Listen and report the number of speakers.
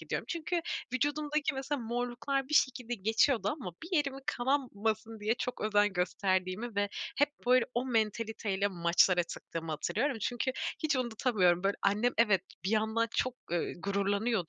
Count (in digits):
1